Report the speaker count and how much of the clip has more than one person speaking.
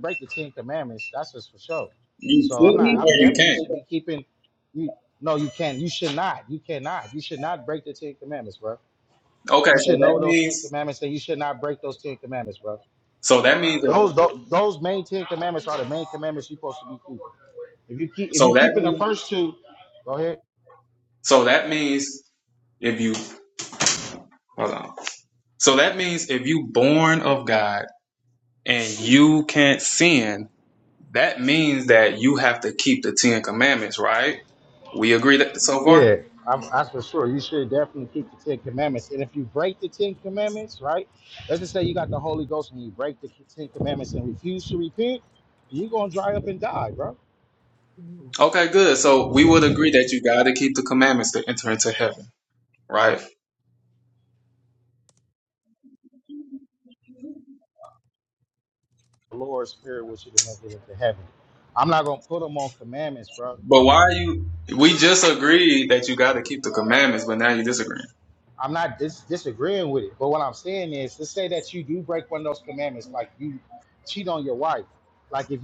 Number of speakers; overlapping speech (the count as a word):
two, about 5%